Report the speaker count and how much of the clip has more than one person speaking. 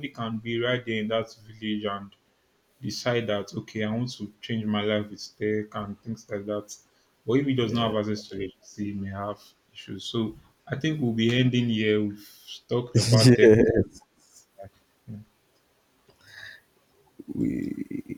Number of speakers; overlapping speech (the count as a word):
two, about 3%